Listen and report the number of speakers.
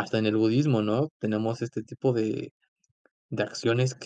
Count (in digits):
1